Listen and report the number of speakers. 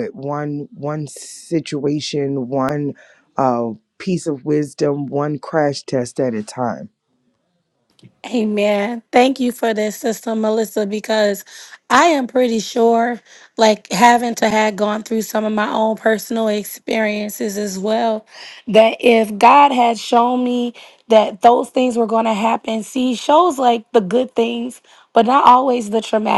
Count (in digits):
2